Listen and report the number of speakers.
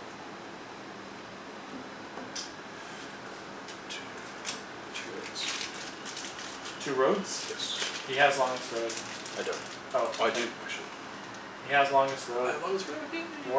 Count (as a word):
two